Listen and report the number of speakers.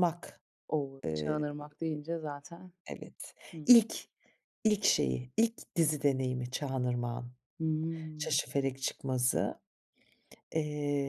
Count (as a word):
two